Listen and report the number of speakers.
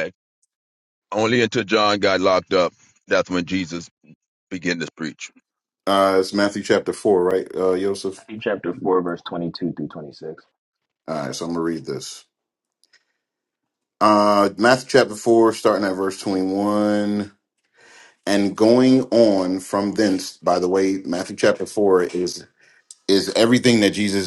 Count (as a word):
three